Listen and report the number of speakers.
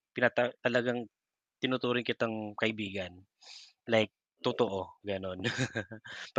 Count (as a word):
one